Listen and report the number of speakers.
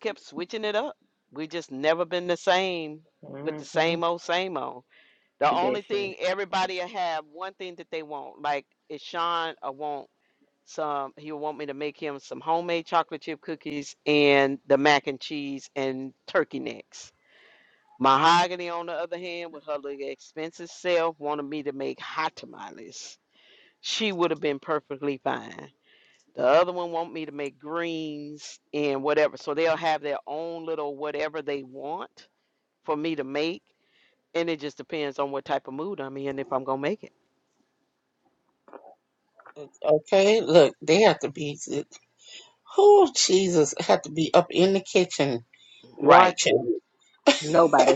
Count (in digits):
3